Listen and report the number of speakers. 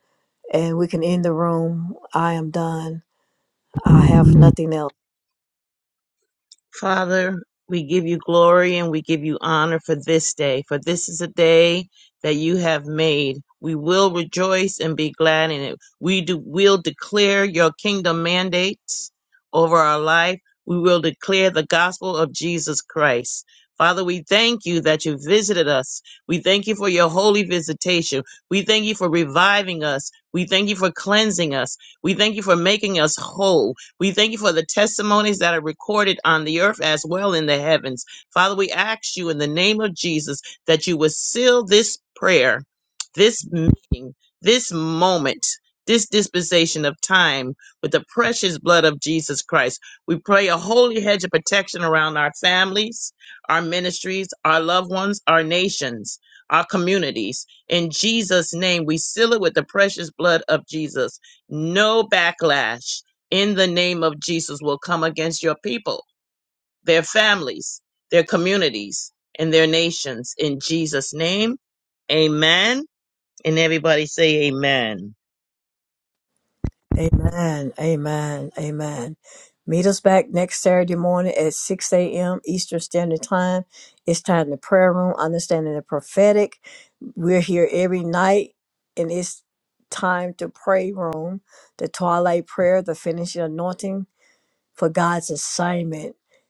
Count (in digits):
2